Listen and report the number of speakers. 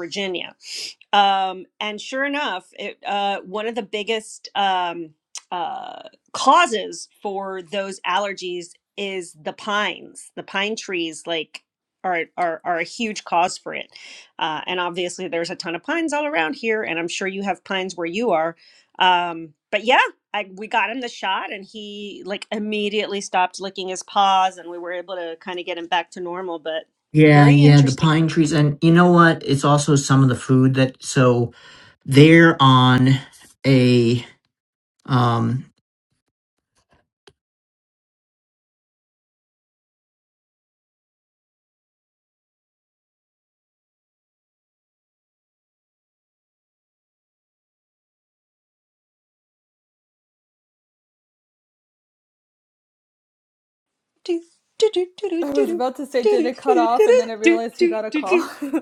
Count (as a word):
three